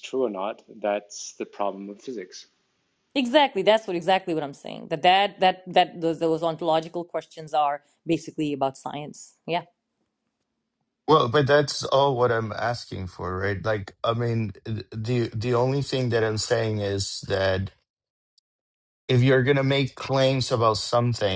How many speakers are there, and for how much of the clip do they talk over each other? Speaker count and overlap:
three, no overlap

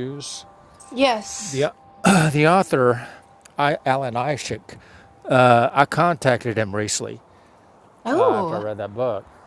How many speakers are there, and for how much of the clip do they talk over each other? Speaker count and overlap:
two, about 7%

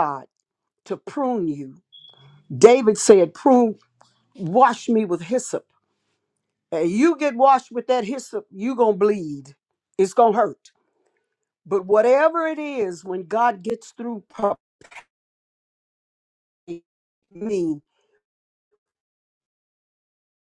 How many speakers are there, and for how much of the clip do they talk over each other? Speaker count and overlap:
one, no overlap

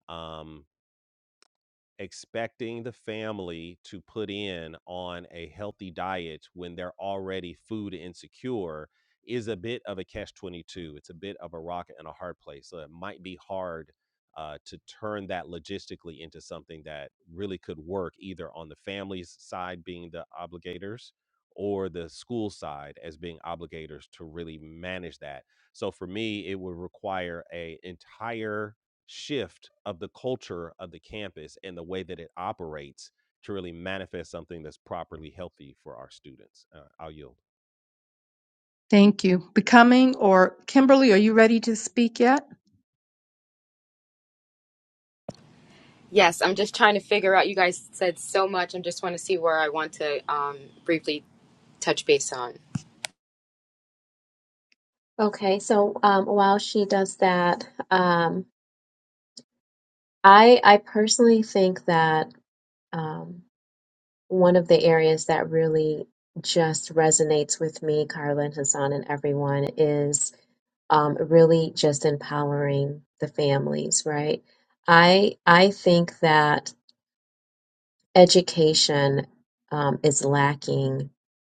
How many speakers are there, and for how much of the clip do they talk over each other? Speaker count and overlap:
four, no overlap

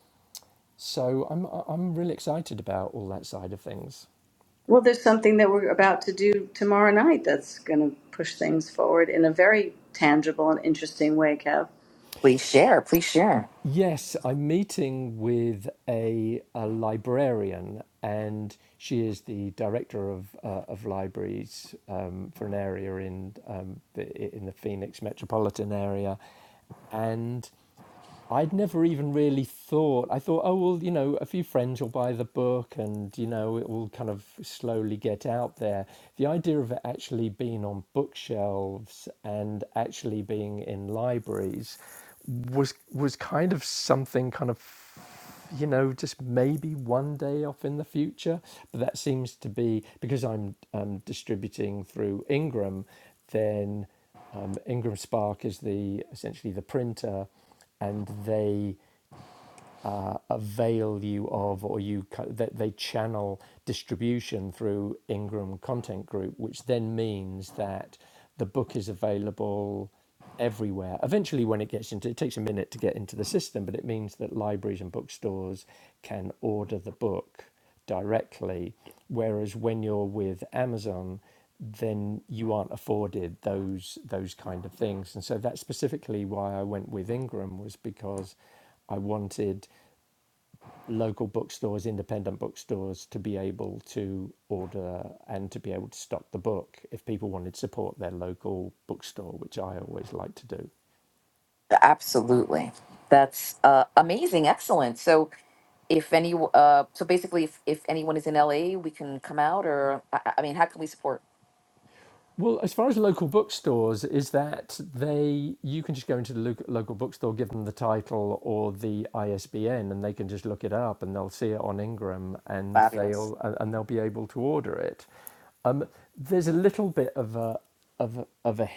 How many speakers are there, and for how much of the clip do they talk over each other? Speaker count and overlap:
three, under 1%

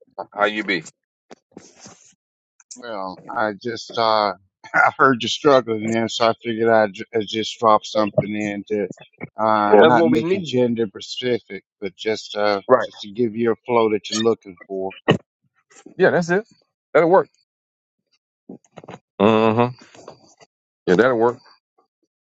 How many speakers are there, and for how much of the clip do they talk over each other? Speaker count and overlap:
two, about 5%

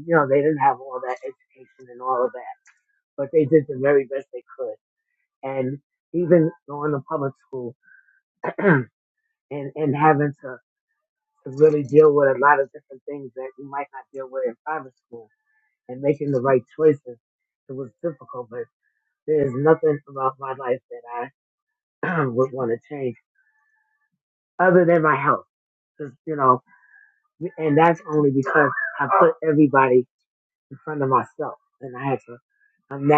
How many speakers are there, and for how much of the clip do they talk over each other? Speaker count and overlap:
one, no overlap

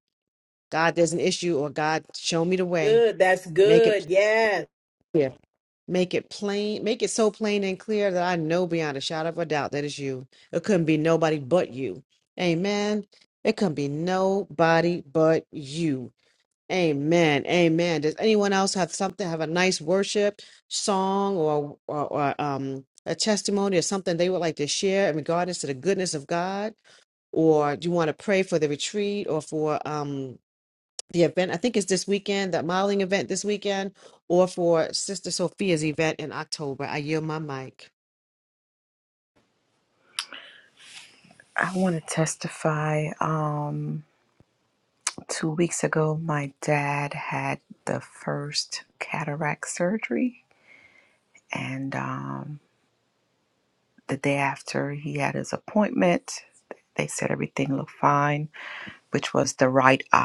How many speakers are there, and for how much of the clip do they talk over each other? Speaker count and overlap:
three, about 1%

